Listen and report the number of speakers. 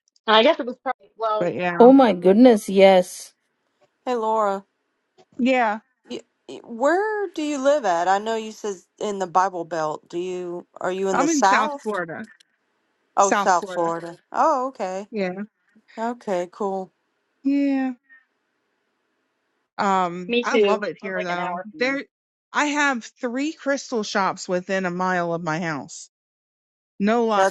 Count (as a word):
four